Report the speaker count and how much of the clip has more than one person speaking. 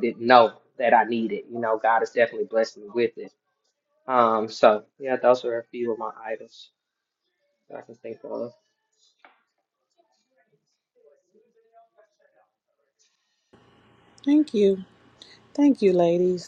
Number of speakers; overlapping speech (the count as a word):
two, no overlap